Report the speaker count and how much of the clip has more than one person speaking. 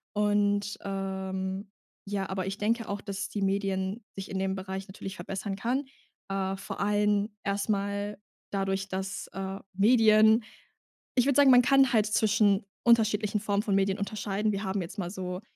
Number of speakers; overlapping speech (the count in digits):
1, no overlap